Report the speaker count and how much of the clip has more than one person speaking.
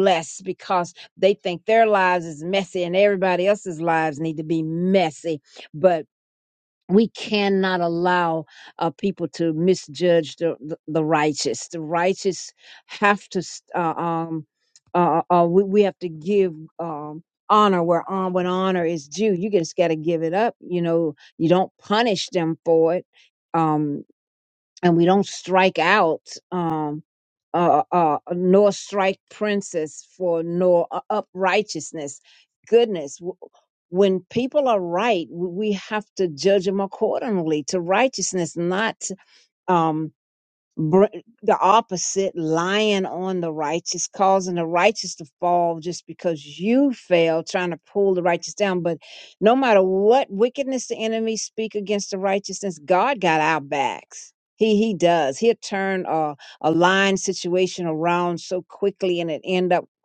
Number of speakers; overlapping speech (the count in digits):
1, no overlap